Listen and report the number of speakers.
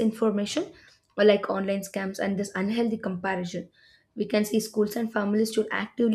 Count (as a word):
one